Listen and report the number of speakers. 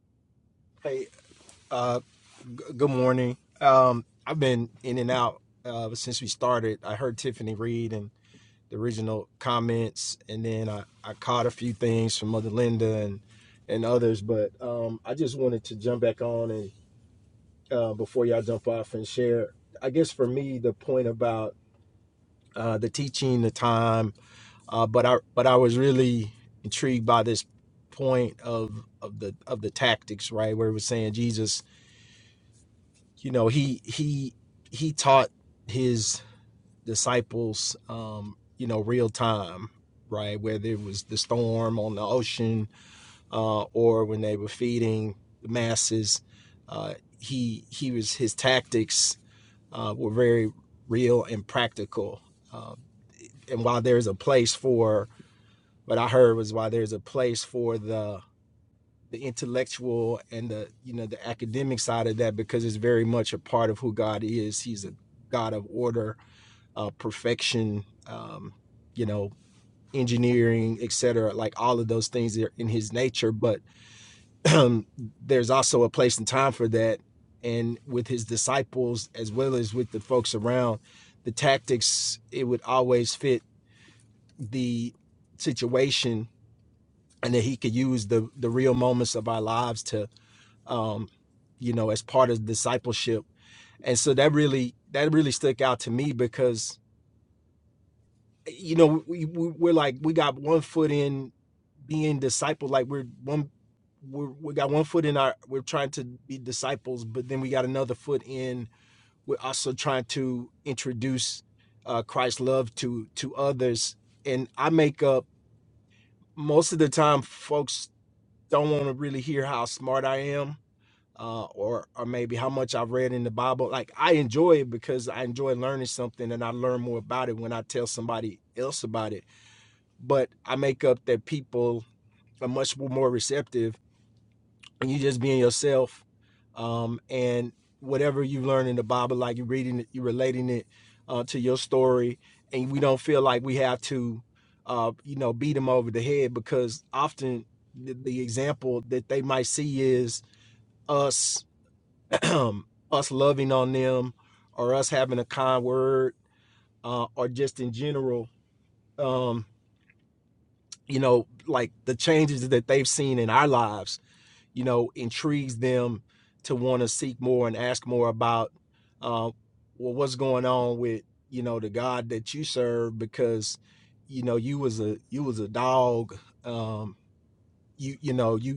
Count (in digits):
1